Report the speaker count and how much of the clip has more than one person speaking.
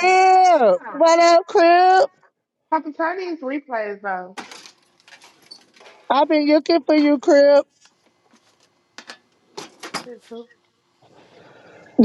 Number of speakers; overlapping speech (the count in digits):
2, under 1%